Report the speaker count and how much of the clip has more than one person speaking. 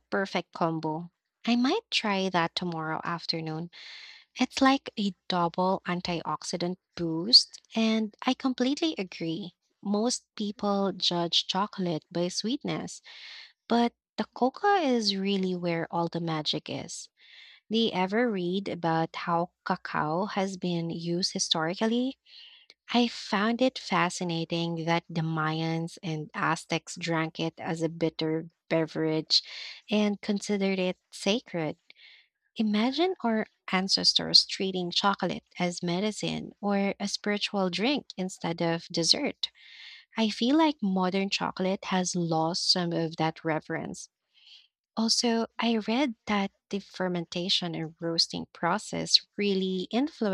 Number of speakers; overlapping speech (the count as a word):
one, no overlap